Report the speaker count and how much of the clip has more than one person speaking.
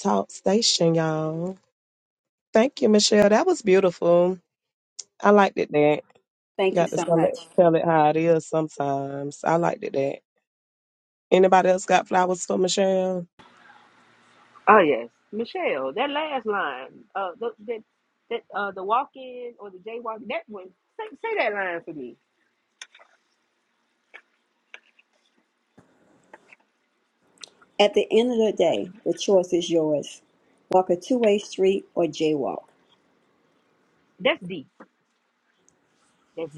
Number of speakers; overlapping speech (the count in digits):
3, about 2%